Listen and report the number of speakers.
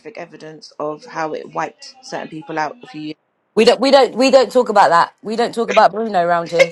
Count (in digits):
2